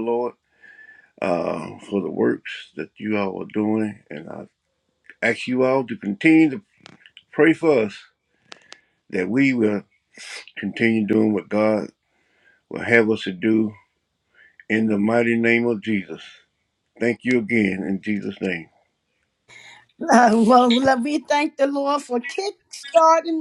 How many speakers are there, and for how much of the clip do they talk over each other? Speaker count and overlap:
two, no overlap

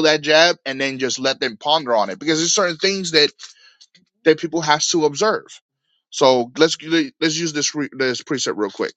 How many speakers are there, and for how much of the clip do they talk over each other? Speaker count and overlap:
one, no overlap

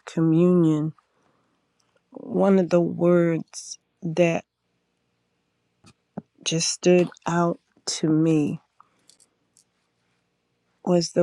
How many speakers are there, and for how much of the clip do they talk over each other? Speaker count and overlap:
one, no overlap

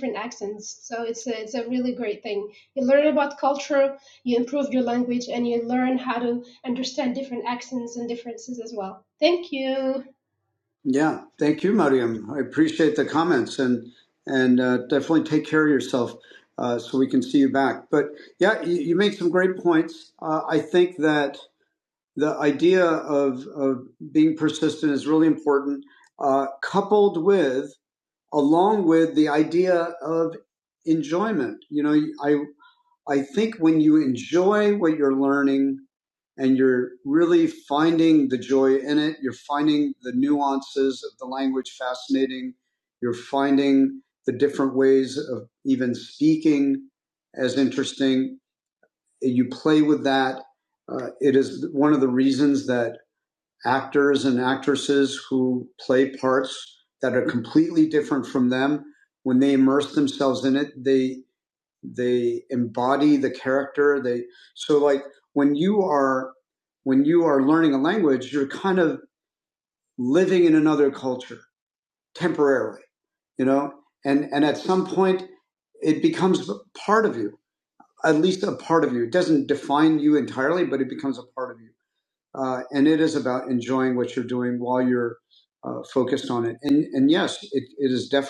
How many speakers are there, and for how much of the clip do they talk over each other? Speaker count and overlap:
two, no overlap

